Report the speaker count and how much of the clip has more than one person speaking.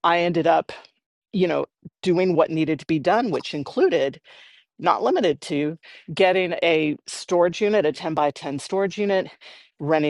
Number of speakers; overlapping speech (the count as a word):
one, no overlap